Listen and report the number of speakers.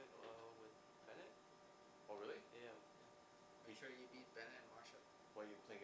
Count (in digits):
3